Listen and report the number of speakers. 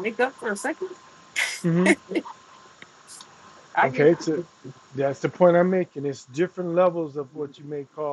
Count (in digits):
2